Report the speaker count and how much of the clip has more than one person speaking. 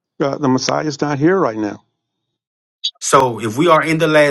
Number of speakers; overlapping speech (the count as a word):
two, no overlap